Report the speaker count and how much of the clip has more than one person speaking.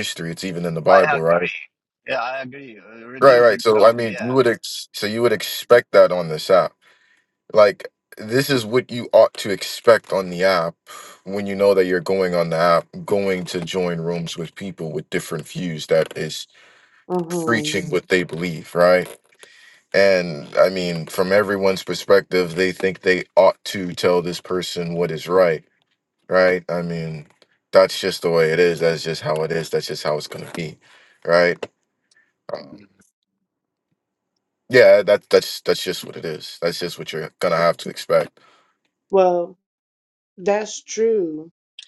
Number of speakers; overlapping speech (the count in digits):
3, about 5%